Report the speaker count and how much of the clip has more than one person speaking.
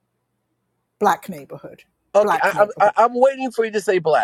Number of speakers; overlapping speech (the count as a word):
two, about 16%